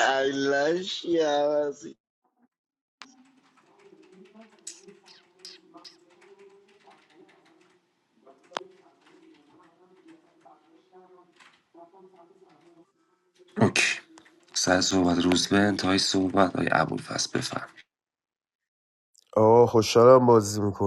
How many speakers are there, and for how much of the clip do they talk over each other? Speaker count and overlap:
three, no overlap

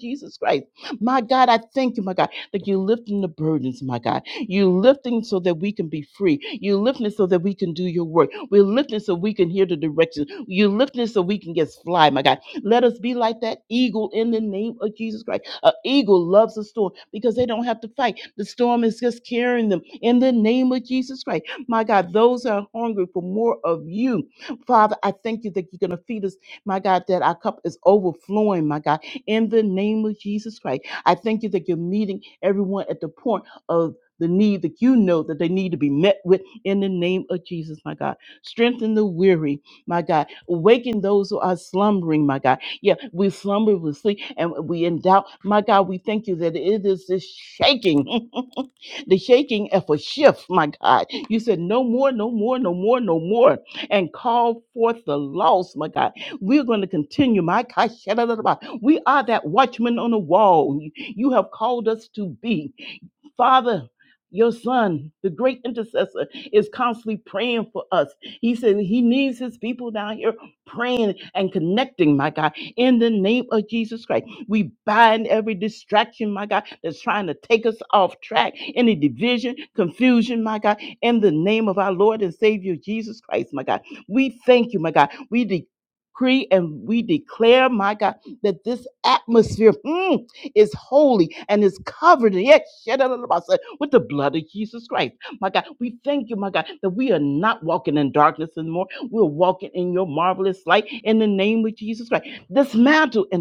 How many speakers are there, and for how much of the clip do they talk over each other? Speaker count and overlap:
one, no overlap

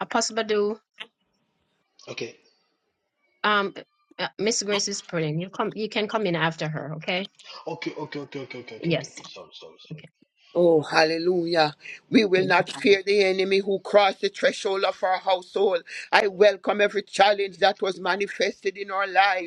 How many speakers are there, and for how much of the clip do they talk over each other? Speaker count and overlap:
three, about 3%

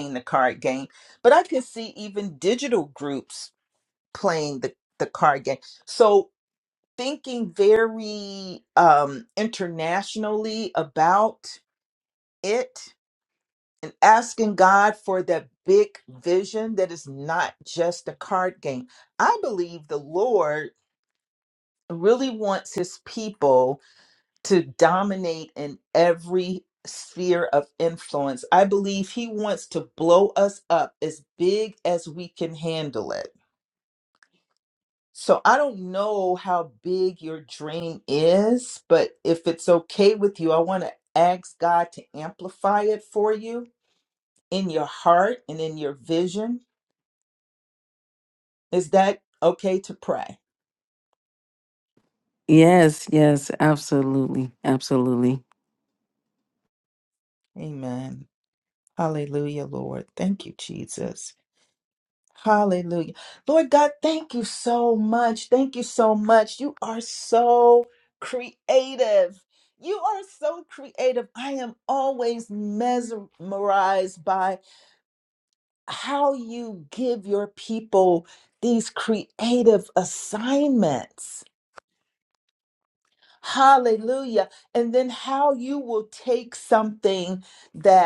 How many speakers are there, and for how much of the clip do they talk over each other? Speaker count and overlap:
two, no overlap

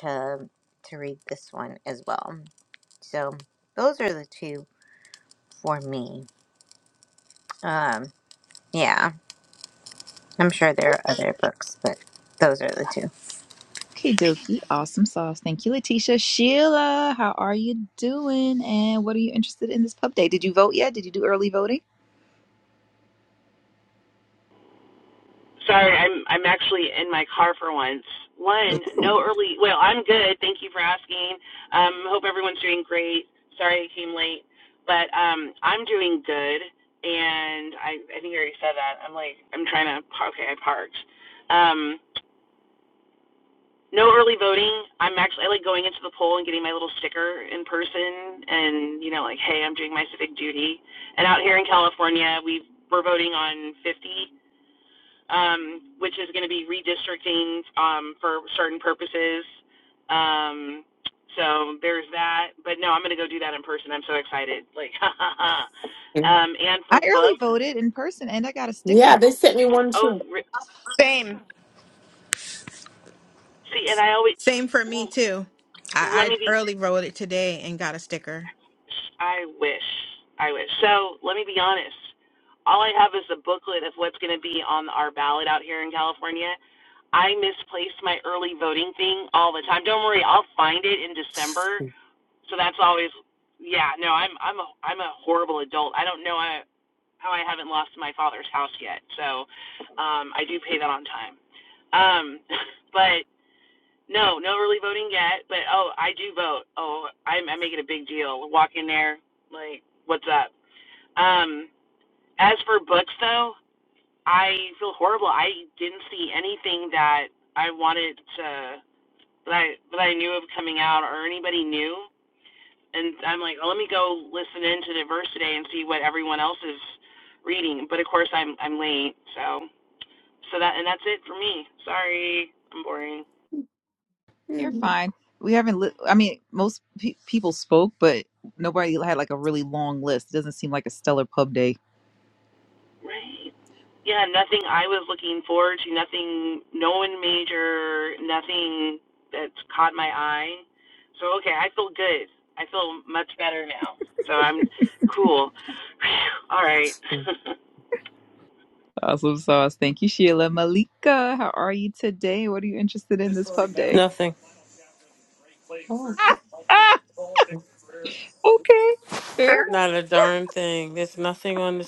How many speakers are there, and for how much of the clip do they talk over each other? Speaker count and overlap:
six, about 2%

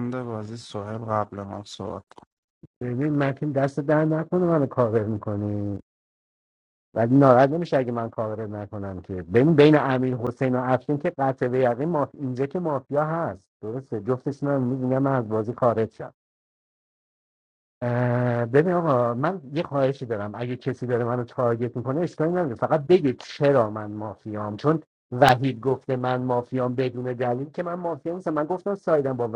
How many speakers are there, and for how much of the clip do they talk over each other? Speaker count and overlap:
two, no overlap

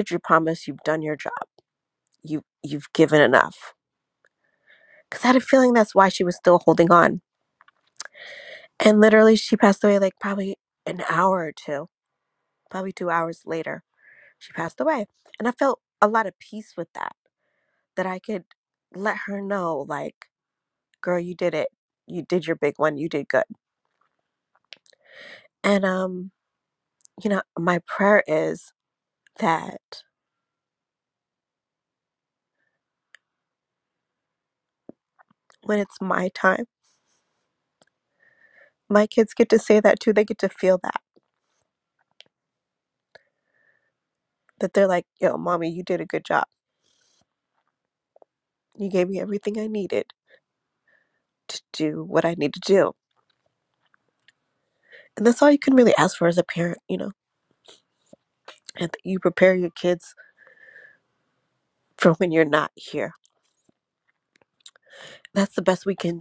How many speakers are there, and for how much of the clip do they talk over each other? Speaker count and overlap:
one, no overlap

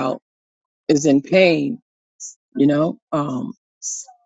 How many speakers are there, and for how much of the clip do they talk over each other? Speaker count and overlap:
one, no overlap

